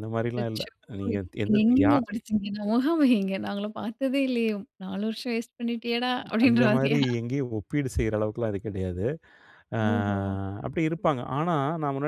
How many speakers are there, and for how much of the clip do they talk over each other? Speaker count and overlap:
two, about 17%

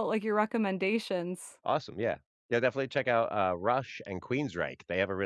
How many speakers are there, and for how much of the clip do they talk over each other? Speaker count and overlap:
two, no overlap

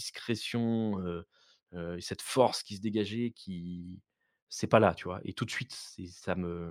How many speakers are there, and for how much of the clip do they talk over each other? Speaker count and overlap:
one, no overlap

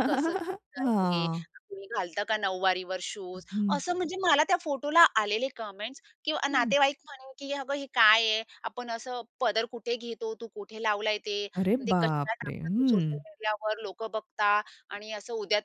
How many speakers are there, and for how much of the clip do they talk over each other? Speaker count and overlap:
two, about 15%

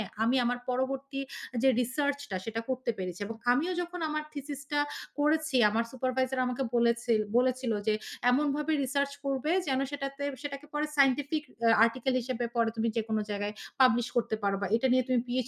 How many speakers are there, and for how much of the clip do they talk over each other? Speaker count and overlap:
one, no overlap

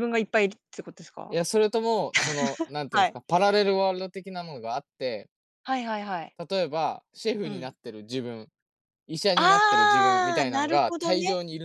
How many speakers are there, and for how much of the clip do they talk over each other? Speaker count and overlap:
two, about 21%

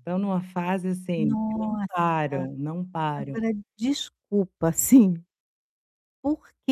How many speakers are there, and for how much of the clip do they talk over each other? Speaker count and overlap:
two, about 14%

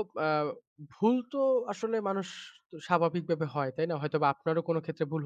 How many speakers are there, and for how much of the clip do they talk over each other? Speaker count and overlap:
one, no overlap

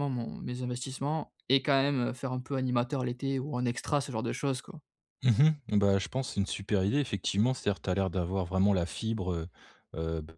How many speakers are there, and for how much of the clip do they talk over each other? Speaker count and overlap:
two, no overlap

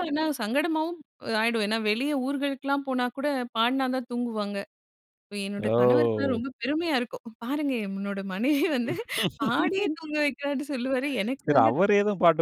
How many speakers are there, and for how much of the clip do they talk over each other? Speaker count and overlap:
two, about 9%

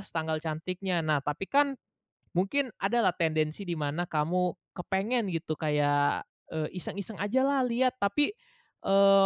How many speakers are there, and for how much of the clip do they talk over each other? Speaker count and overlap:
one, no overlap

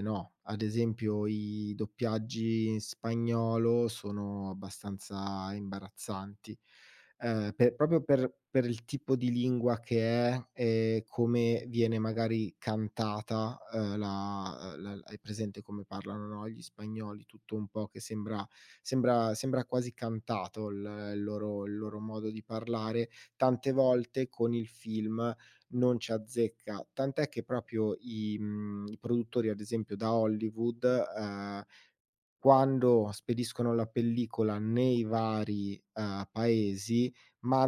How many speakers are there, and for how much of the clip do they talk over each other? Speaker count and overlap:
one, no overlap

